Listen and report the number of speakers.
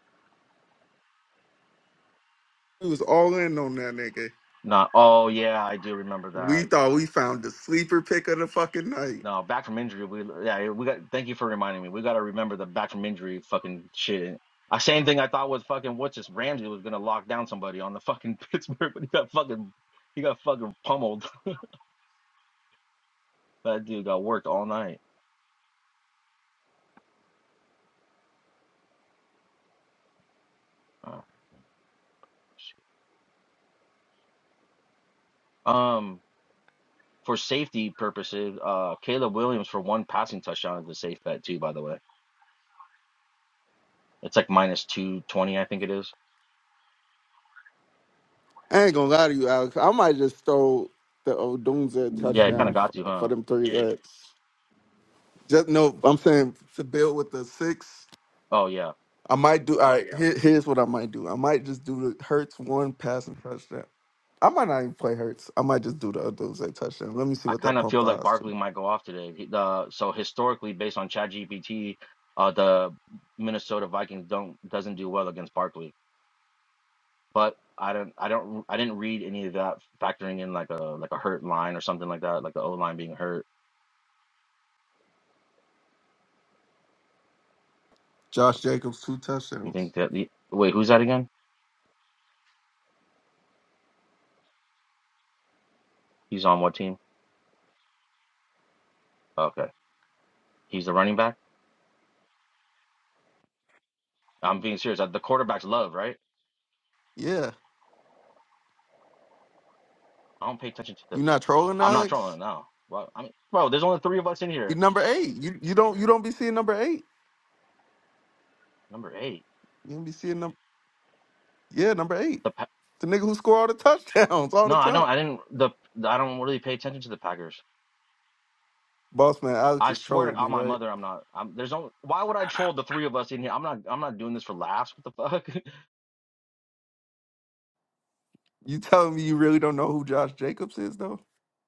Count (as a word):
two